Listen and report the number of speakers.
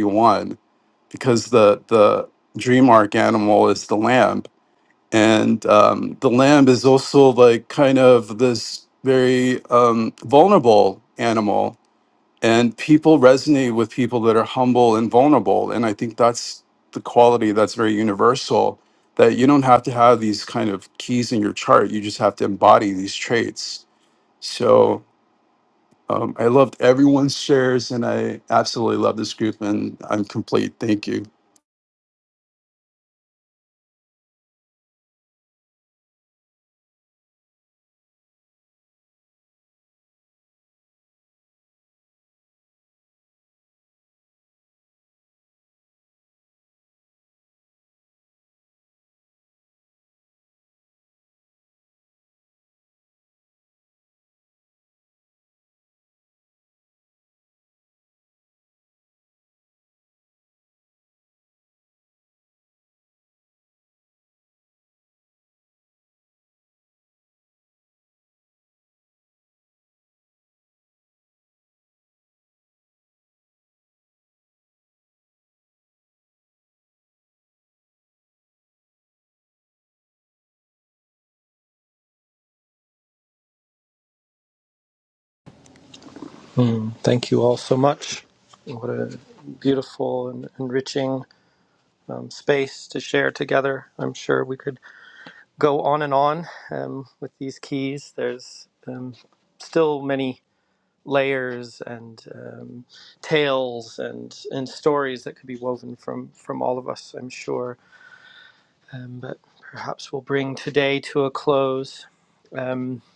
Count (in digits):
2